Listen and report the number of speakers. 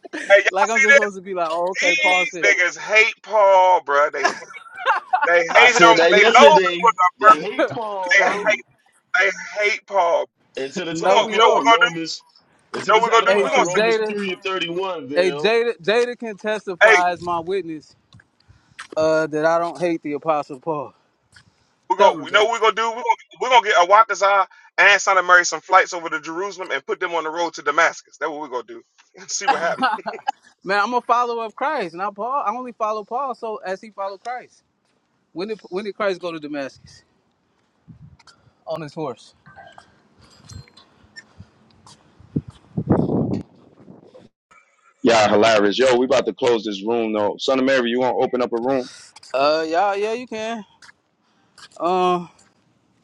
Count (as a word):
four